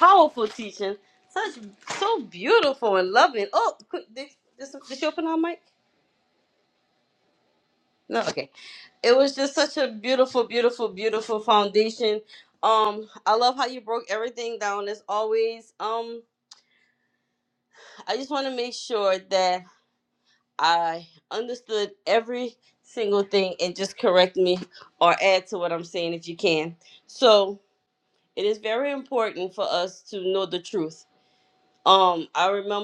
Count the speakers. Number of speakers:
one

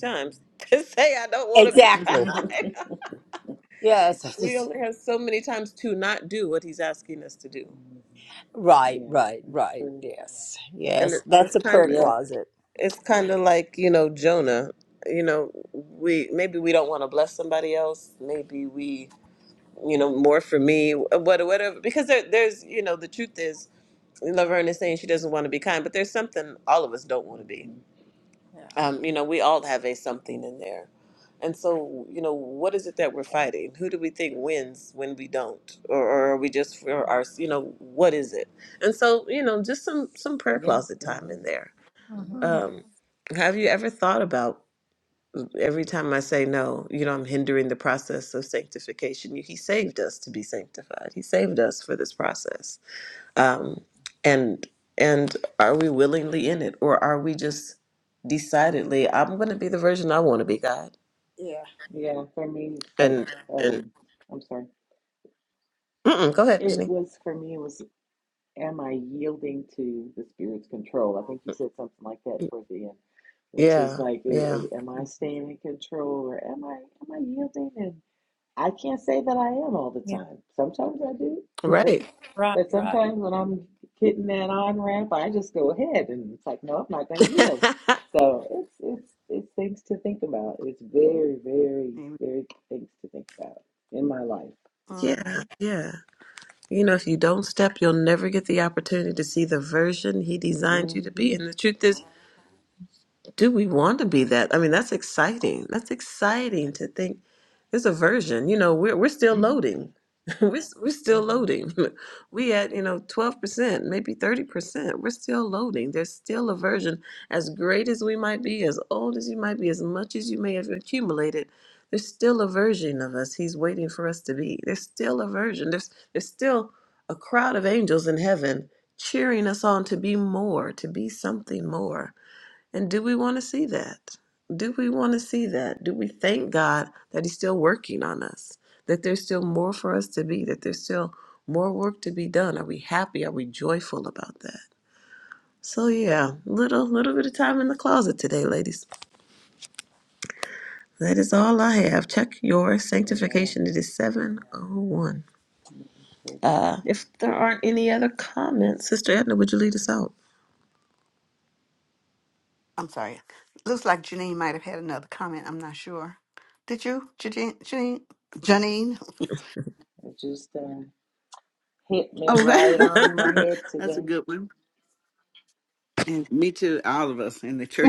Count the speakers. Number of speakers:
four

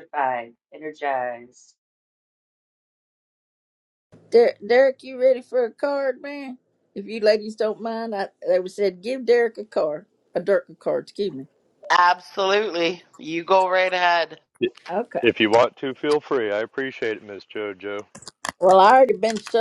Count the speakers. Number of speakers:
four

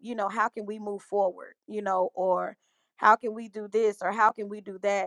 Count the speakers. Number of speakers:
one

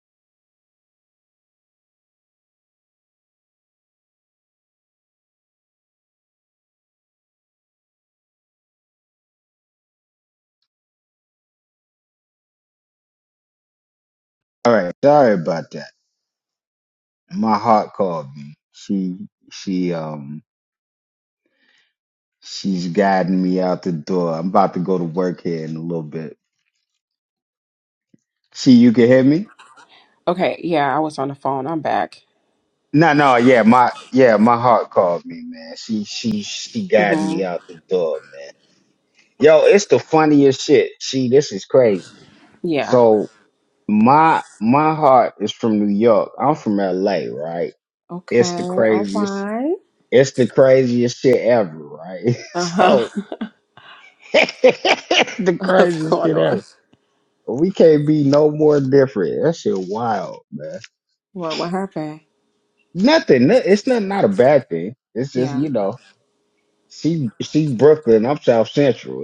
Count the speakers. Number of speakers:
two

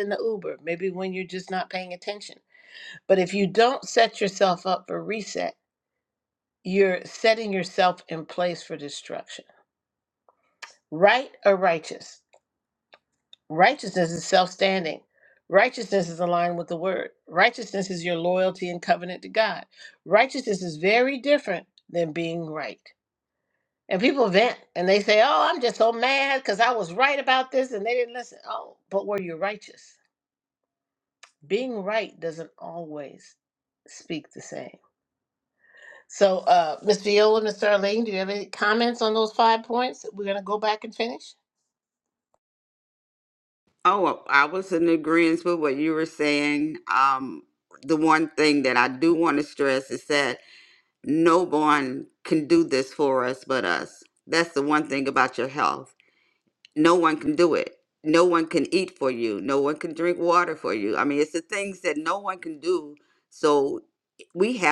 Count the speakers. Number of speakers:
two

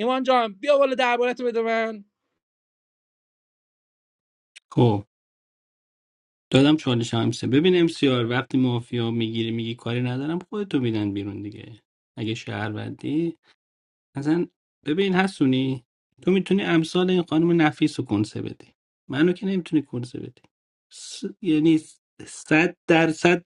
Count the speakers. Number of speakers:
two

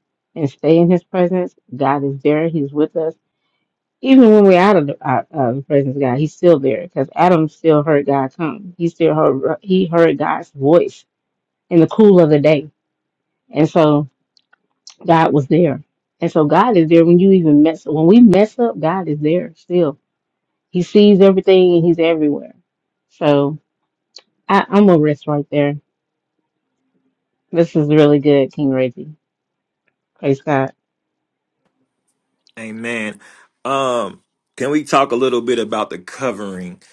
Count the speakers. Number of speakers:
two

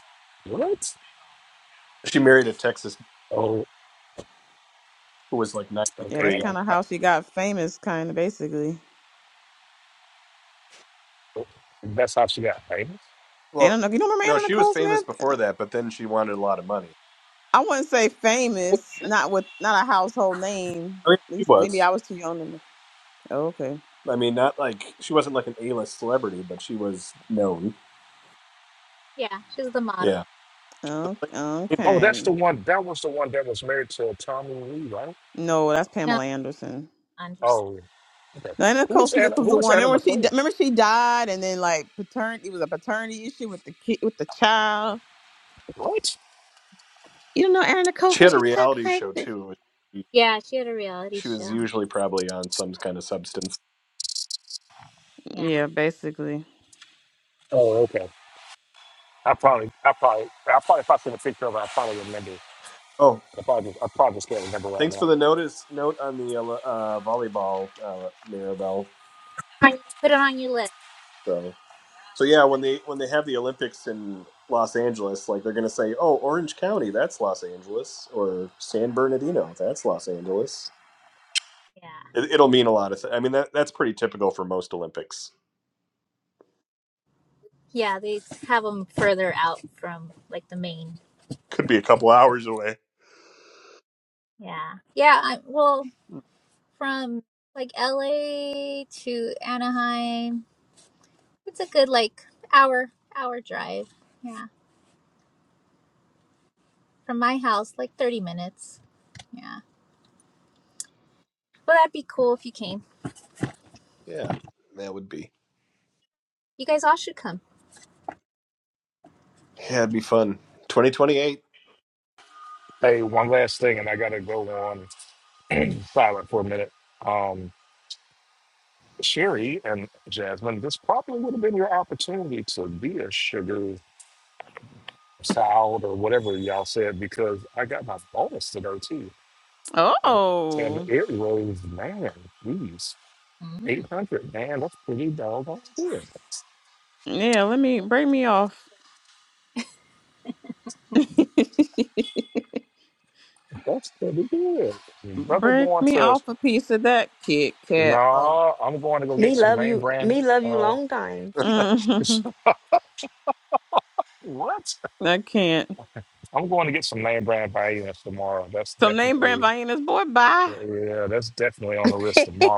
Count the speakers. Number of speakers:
five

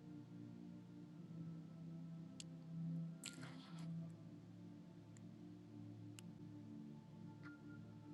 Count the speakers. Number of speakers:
zero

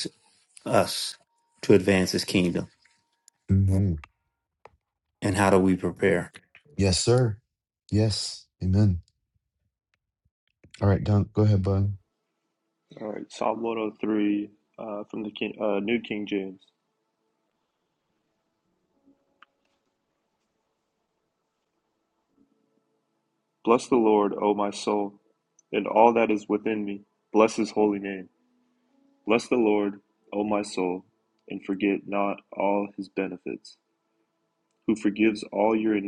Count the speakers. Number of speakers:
three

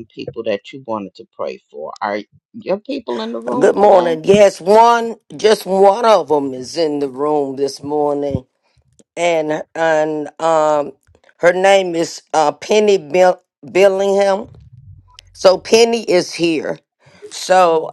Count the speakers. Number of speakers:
two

